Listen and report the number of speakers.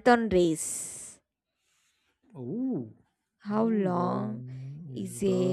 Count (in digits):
2